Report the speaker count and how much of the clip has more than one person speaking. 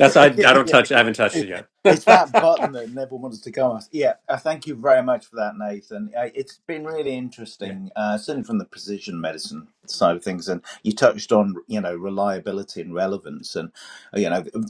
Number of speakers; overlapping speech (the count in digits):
2, about 2%